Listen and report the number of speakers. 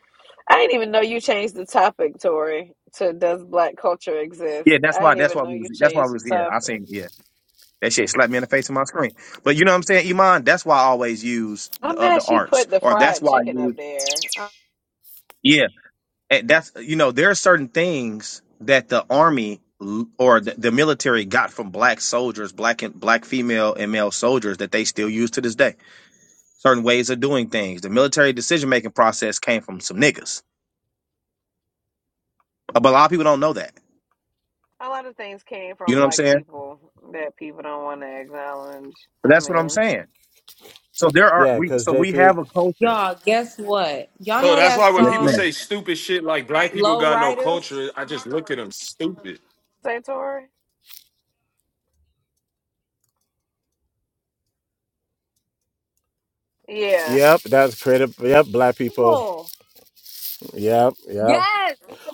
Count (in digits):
5